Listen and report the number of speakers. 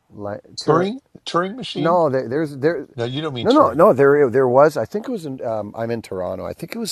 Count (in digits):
2